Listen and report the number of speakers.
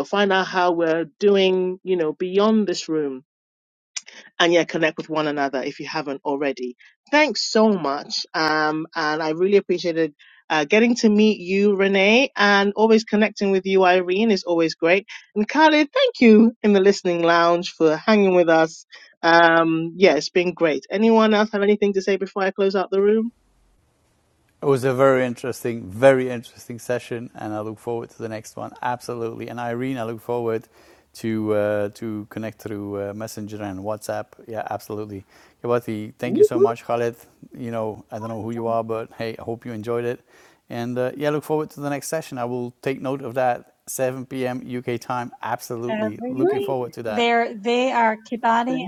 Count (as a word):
three